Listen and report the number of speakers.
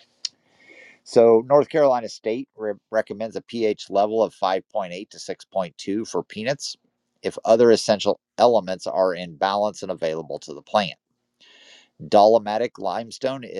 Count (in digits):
1